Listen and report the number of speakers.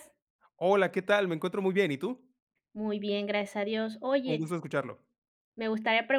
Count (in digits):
2